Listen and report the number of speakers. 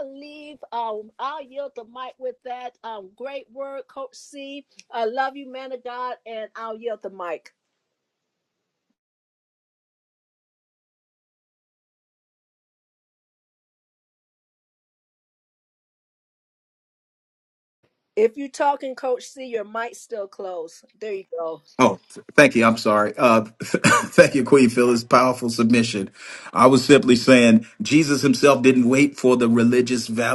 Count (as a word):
two